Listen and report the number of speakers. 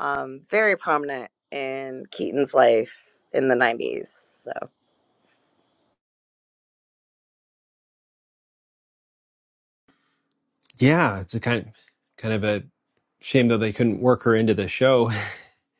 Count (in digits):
2